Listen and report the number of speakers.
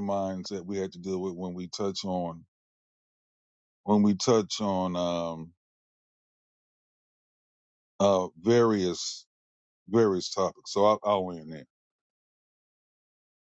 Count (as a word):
one